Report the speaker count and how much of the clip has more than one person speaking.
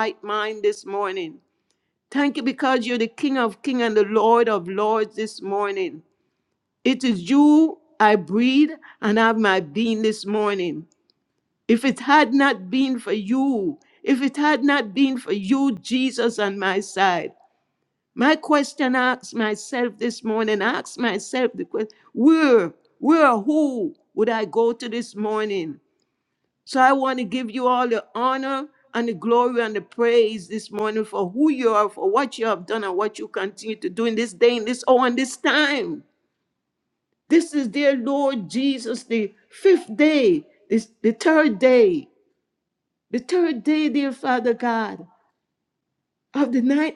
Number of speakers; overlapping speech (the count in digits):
1, no overlap